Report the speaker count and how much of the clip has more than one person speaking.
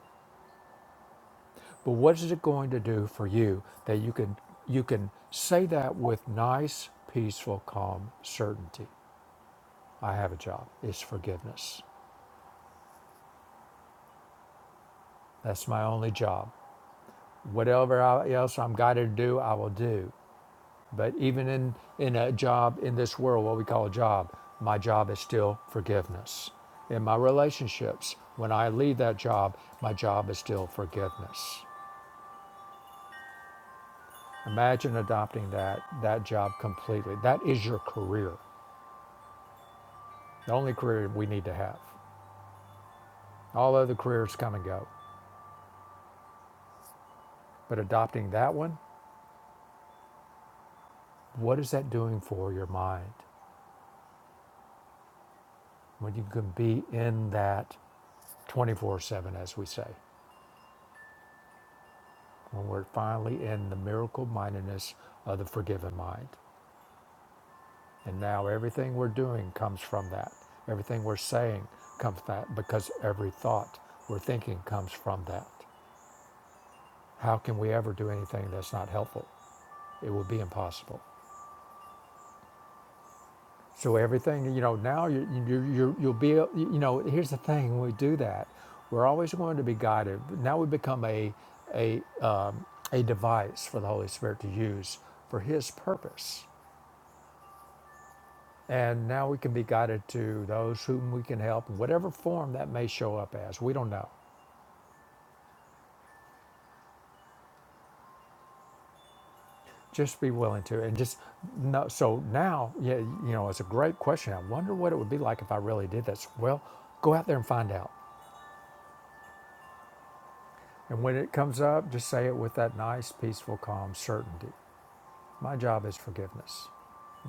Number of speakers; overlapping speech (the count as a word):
one, no overlap